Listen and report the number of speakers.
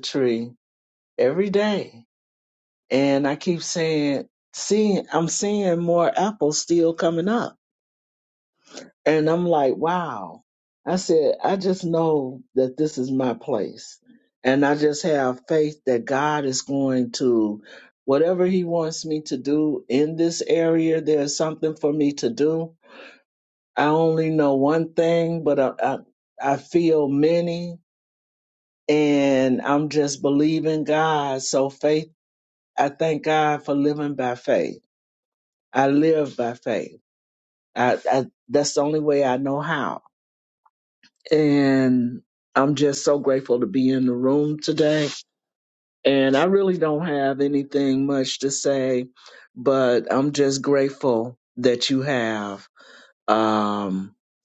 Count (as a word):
one